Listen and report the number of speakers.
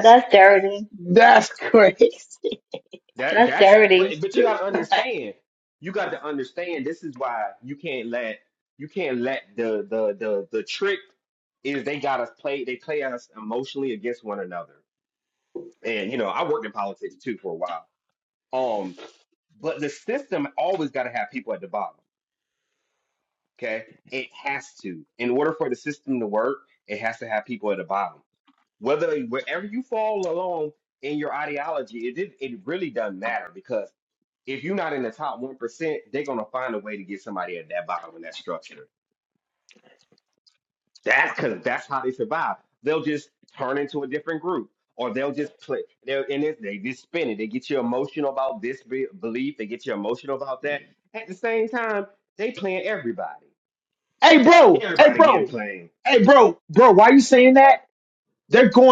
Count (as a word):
three